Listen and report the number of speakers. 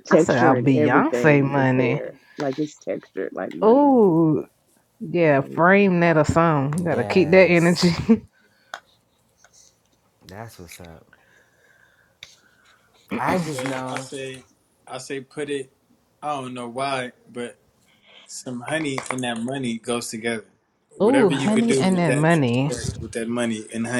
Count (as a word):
four